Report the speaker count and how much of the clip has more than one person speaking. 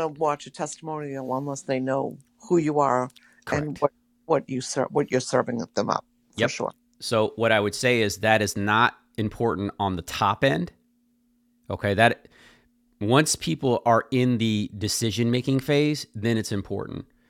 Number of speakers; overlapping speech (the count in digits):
2, about 3%